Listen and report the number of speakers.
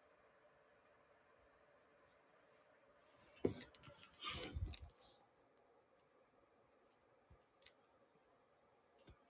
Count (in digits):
0